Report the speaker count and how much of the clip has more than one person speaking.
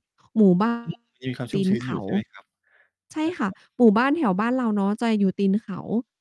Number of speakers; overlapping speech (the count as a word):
two, about 8%